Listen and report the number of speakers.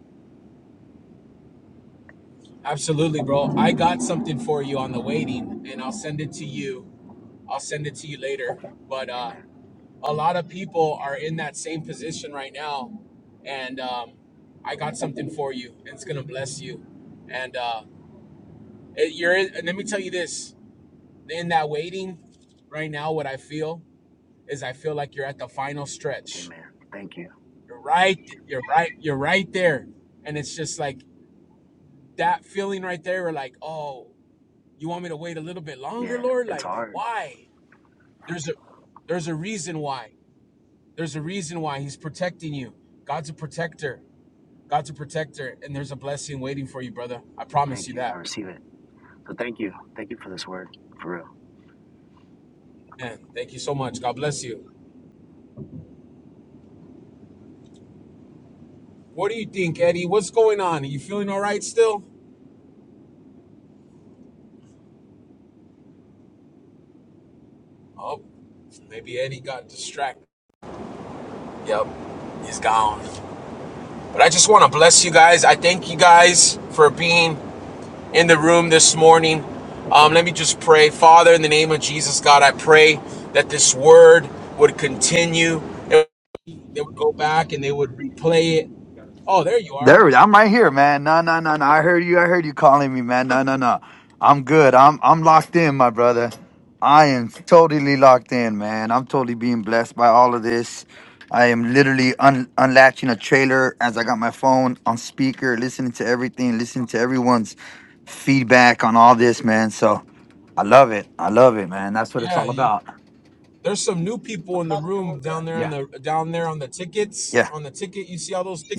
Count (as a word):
three